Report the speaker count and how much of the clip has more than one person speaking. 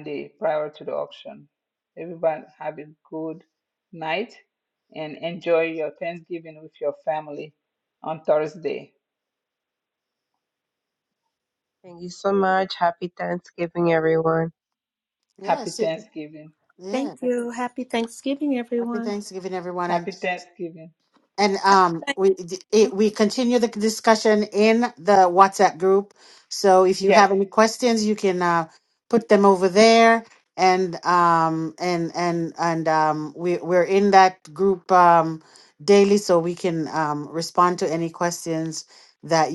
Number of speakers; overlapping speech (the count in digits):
4, about 4%